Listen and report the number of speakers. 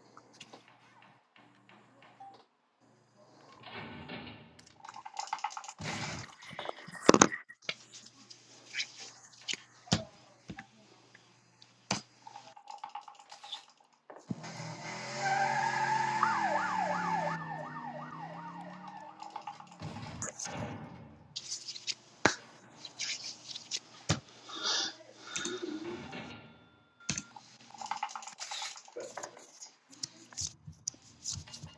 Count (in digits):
0